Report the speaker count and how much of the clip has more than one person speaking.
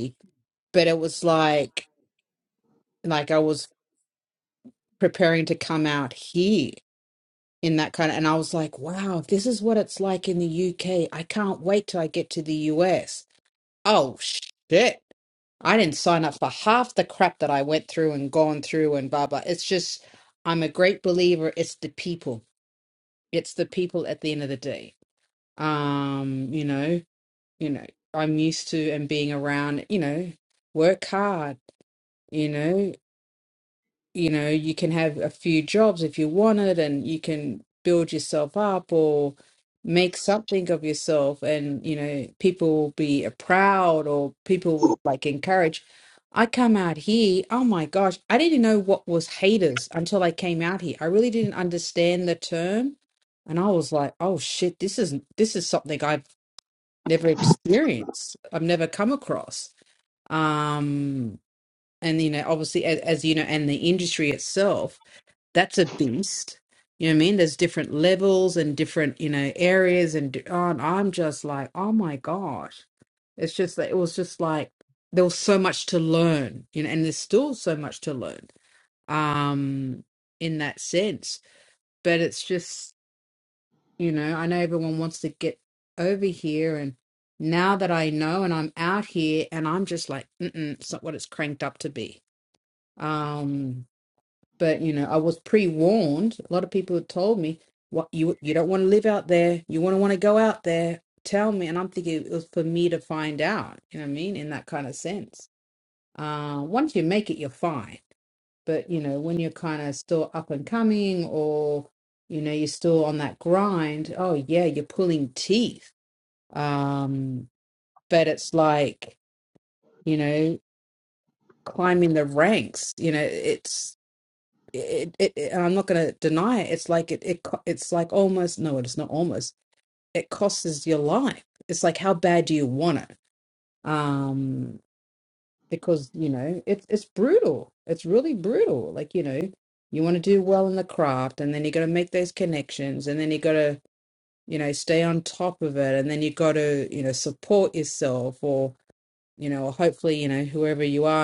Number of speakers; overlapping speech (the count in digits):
1, no overlap